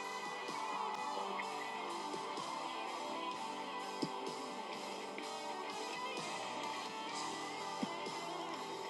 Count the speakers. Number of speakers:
0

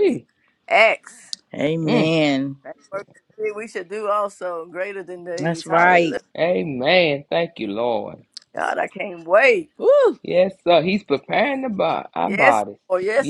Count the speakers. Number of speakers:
3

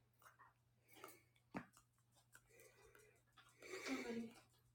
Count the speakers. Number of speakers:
0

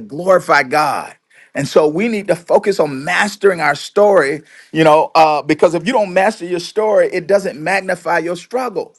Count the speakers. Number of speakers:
1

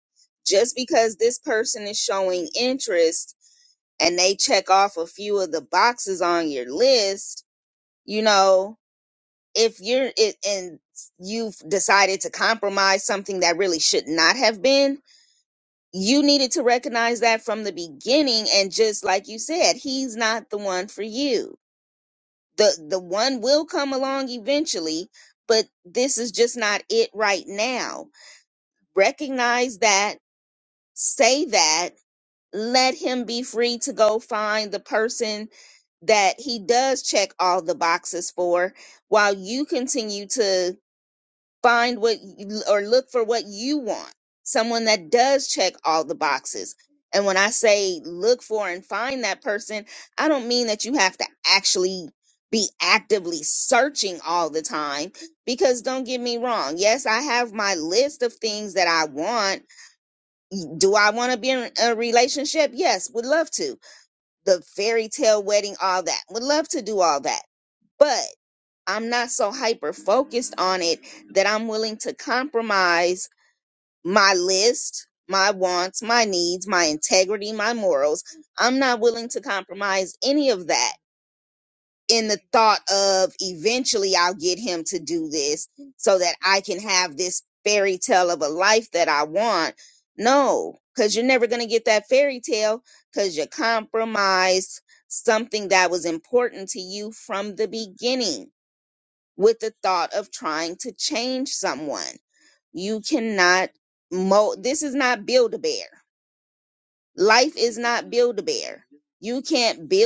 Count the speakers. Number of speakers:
1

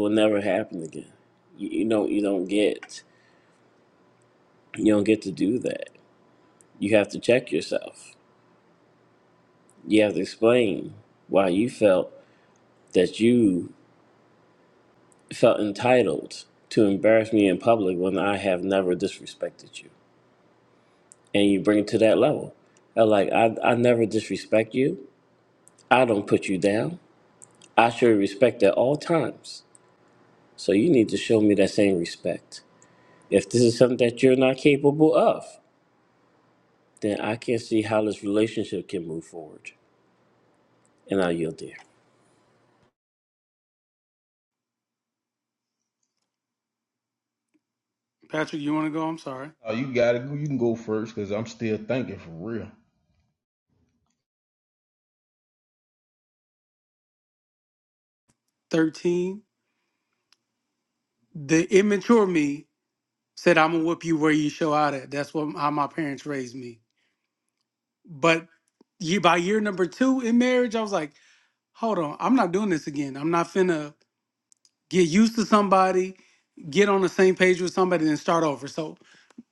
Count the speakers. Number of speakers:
3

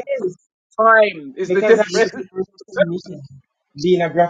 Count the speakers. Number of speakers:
2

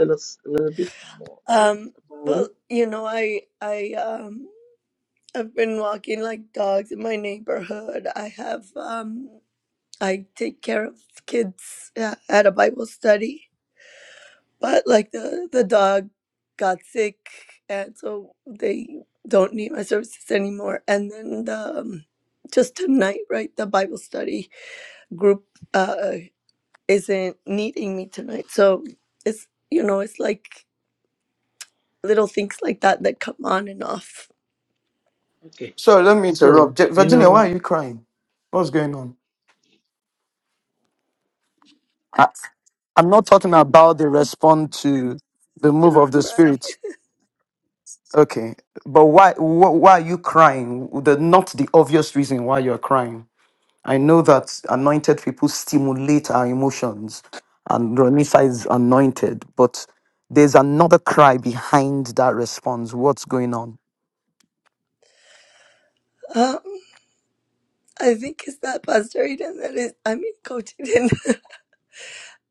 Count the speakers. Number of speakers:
3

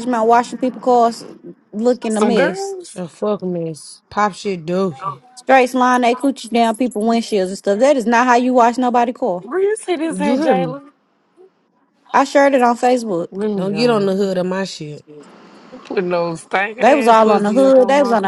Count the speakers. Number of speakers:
3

